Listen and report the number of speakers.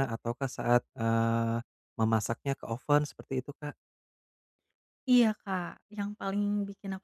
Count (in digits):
2